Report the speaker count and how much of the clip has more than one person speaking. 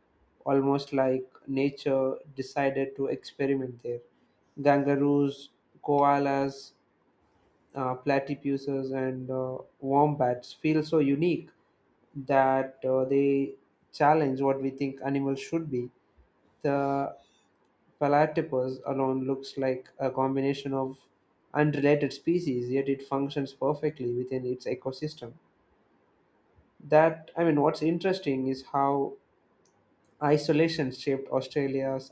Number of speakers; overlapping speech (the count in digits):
1, no overlap